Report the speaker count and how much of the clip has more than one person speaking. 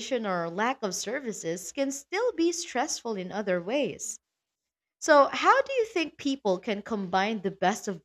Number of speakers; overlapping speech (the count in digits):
1, no overlap